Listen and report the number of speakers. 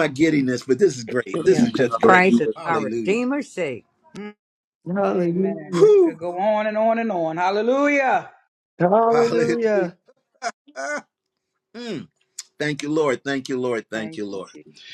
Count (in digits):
4